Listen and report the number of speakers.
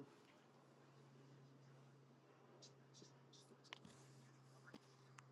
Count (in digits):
0